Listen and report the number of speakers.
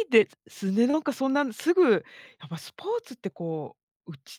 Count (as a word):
one